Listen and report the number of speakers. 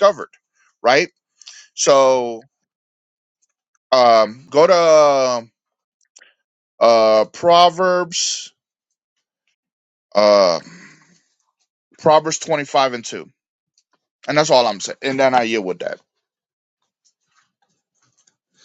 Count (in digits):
1